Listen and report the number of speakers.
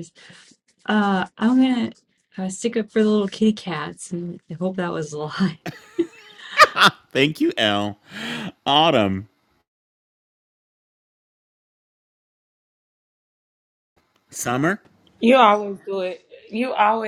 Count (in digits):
3